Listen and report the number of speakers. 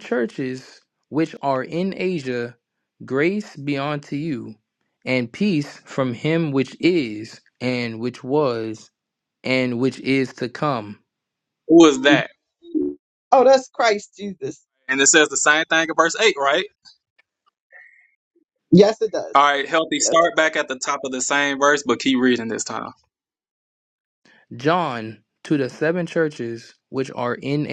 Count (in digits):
3